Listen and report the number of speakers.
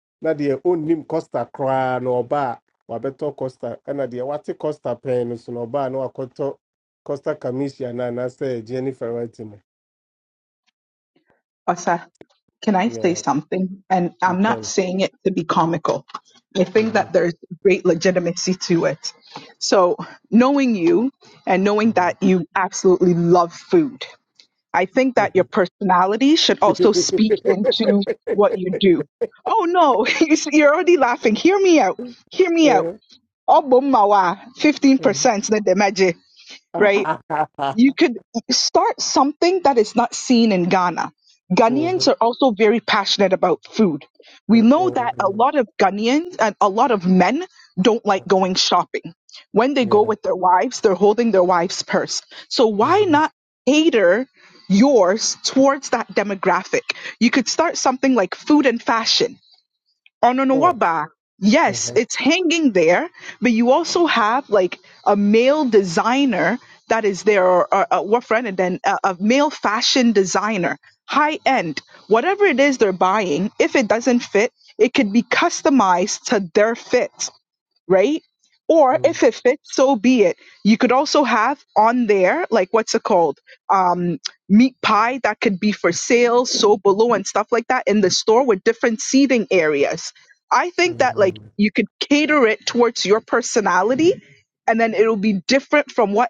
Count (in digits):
2